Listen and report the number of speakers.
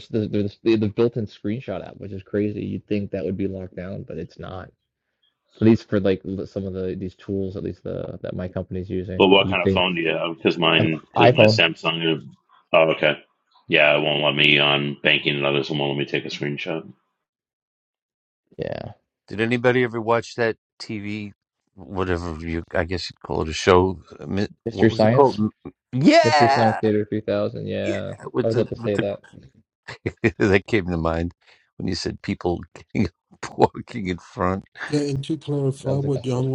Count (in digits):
4